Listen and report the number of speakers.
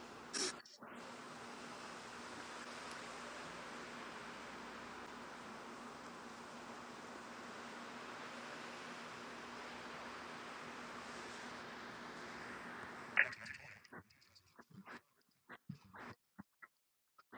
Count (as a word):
zero